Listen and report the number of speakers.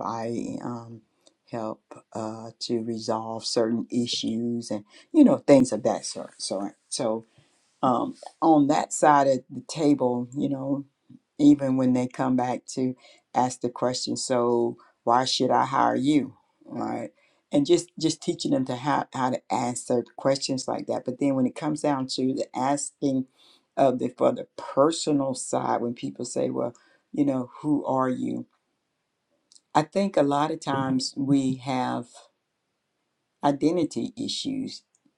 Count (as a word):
one